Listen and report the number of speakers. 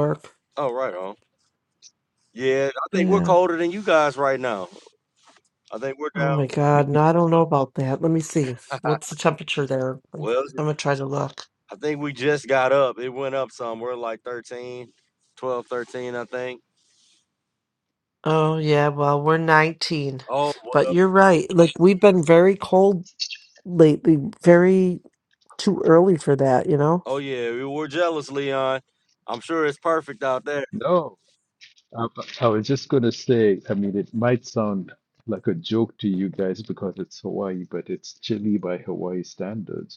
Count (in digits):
3